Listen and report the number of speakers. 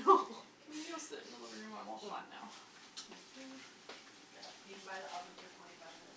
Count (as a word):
two